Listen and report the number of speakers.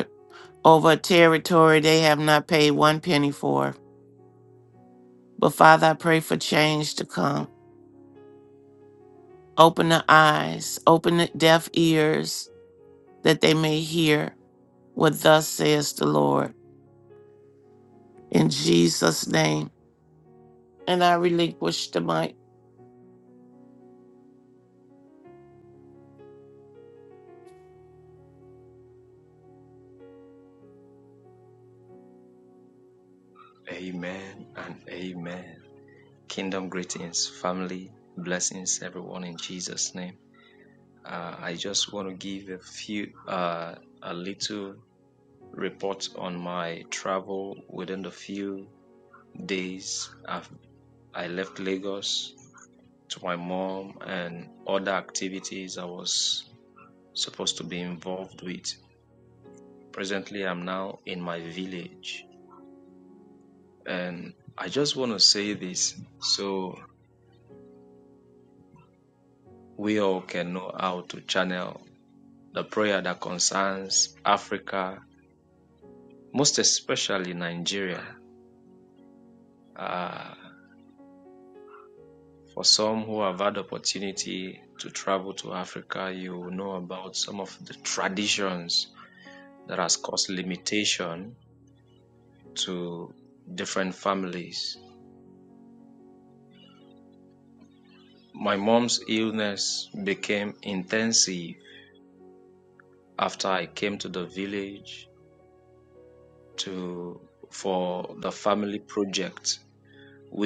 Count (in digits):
2